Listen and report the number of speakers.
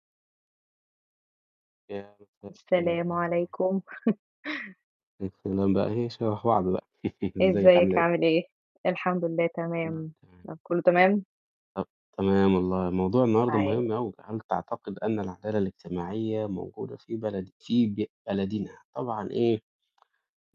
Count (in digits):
2